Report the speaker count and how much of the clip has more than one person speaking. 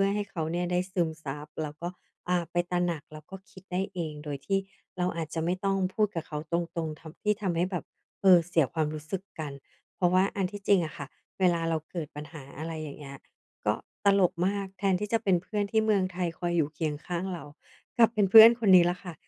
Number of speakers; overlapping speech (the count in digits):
1, no overlap